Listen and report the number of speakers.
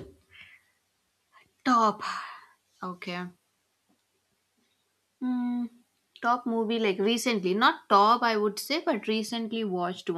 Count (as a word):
one